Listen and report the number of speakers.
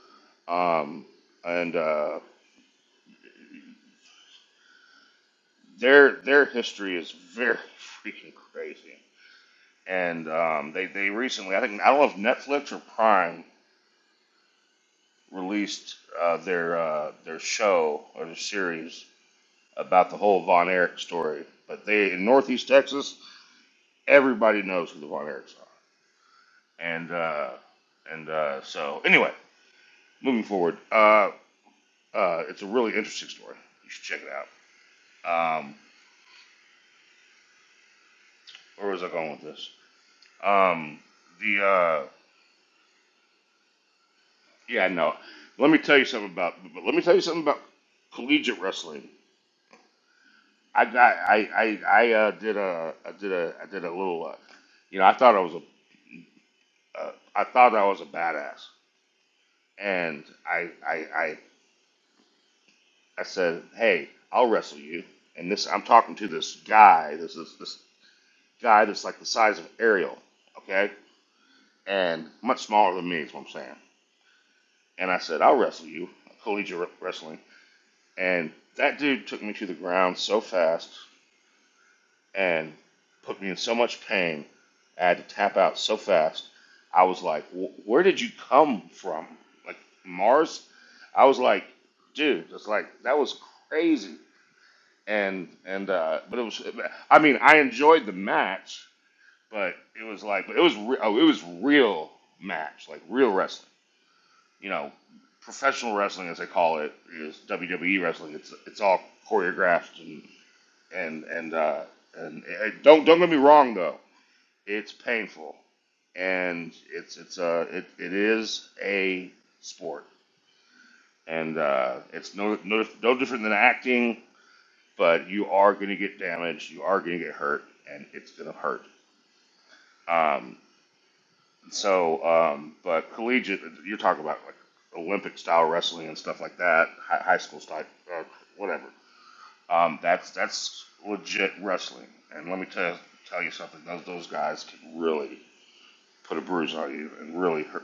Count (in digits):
1